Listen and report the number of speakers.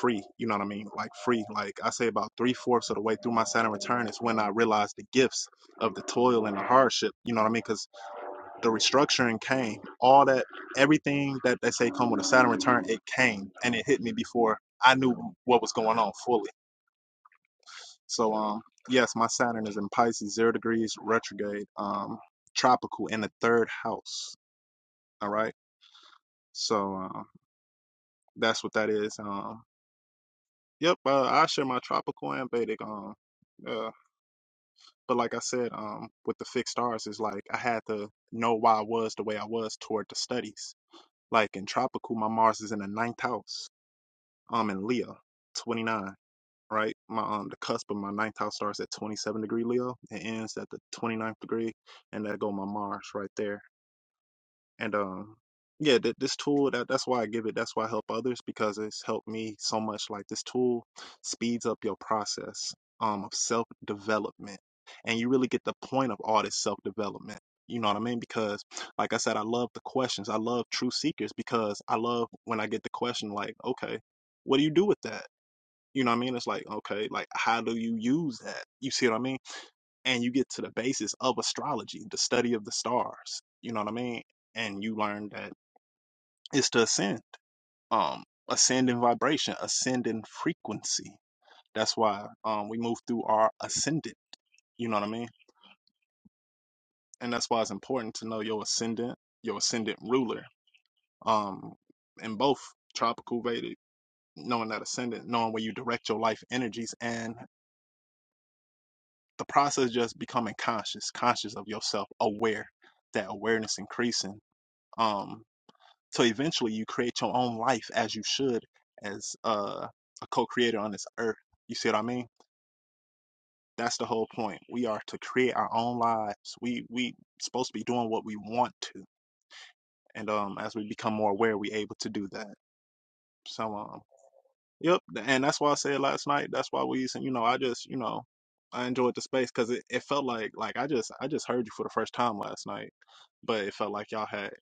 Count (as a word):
one